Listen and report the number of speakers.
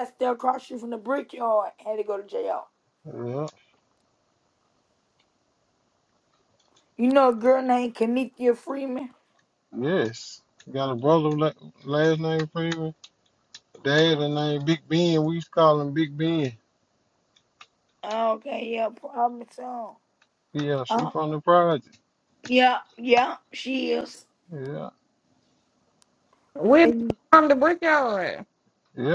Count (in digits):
3